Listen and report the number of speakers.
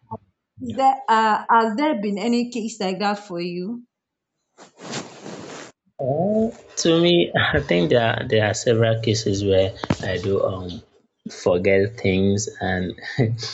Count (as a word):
two